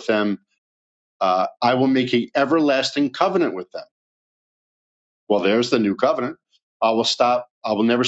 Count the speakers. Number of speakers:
1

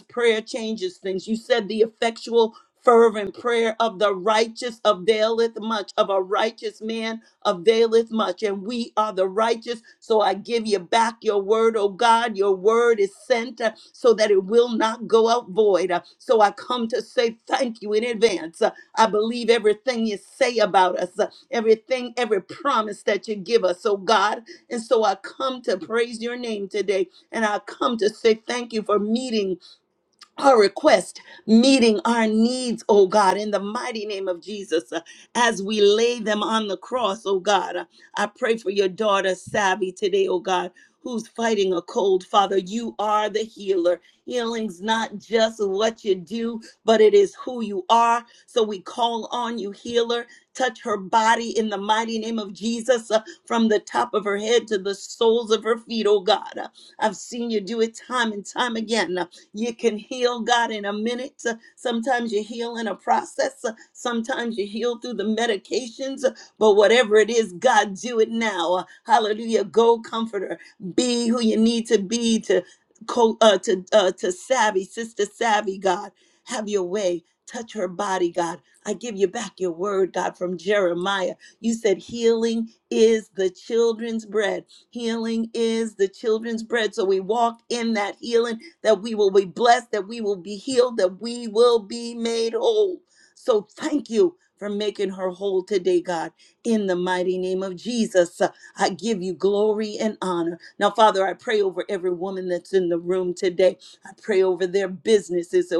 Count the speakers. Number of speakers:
1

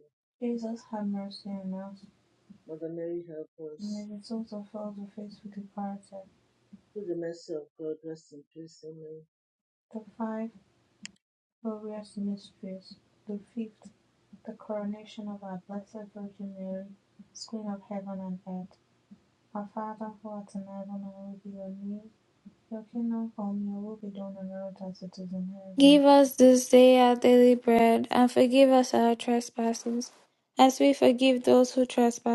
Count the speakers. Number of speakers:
3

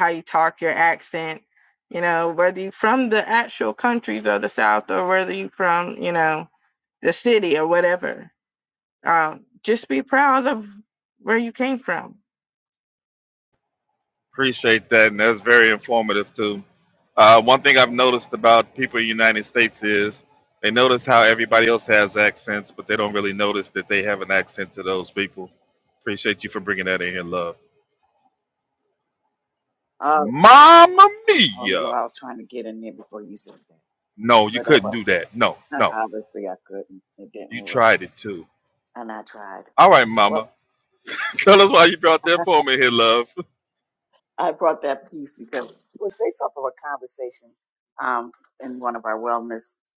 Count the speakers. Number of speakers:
3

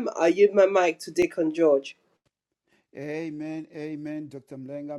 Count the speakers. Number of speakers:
2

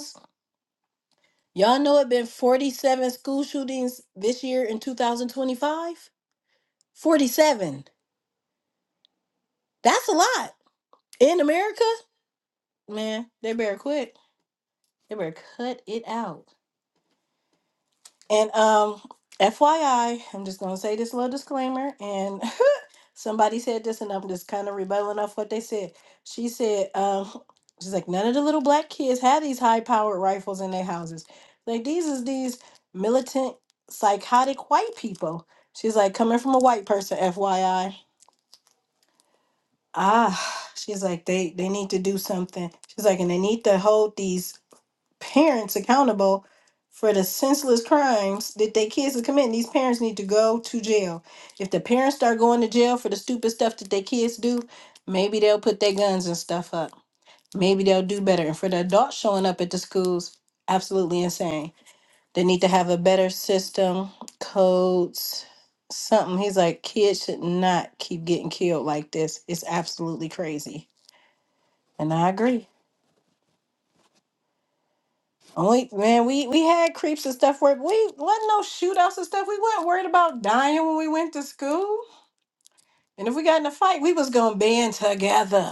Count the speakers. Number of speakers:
1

